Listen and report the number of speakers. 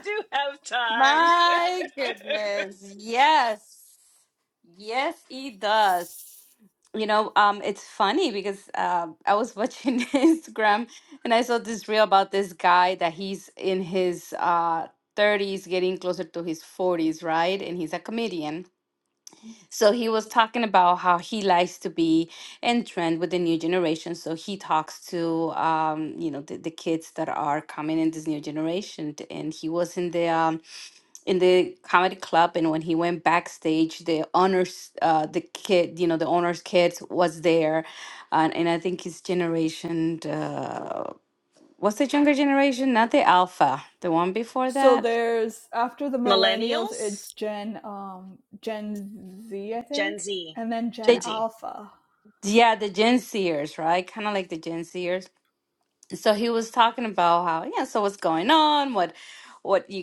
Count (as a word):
three